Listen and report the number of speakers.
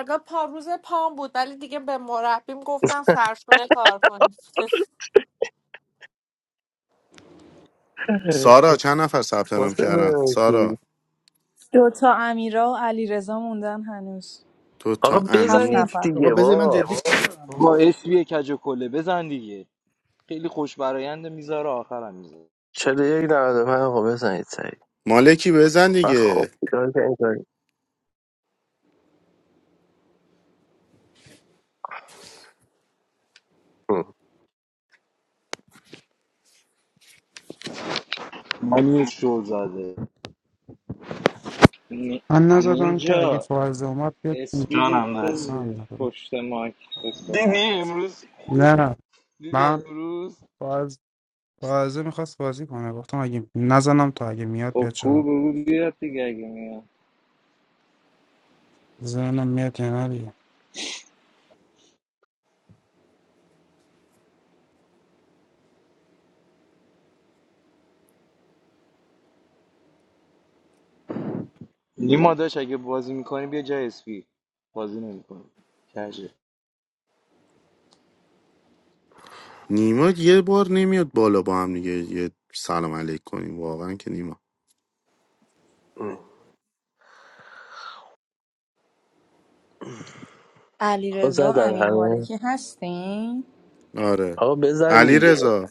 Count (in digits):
8